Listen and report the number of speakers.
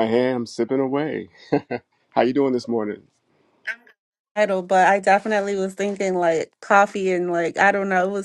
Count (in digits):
2